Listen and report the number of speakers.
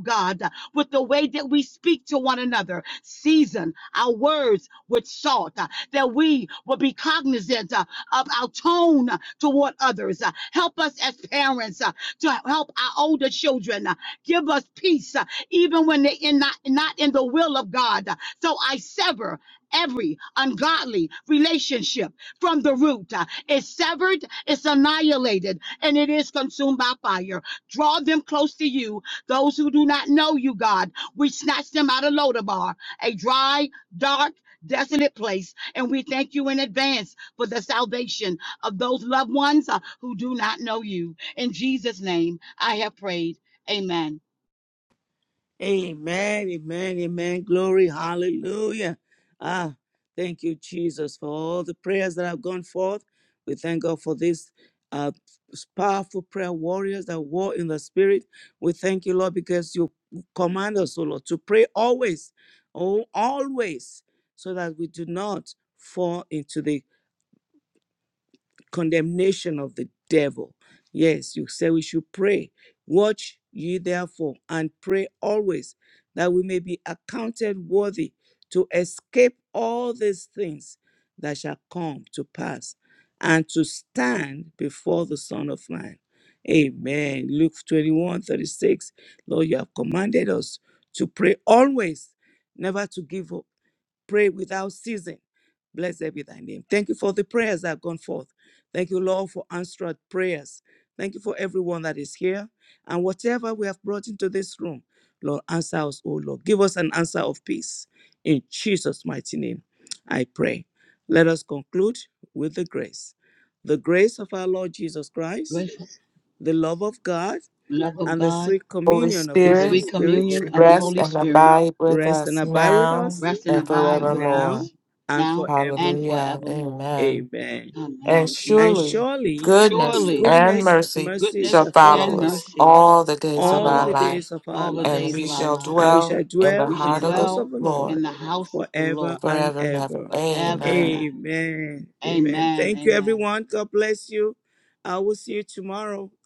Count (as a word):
three